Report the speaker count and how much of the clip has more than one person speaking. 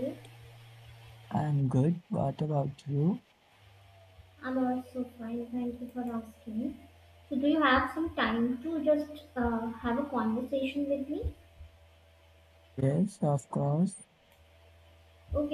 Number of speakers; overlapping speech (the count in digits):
2, no overlap